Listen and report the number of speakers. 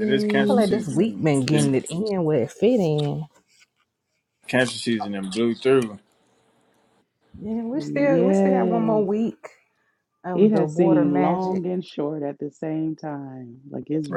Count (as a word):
three